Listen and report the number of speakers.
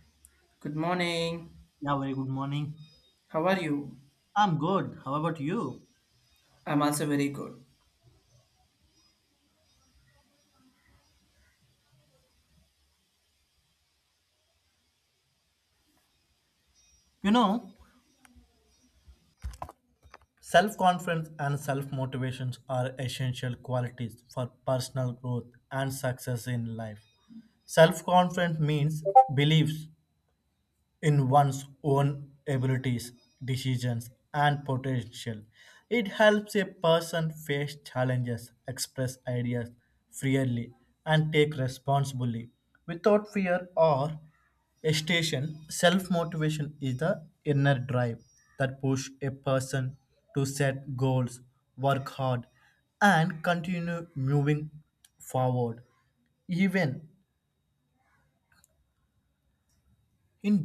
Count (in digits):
2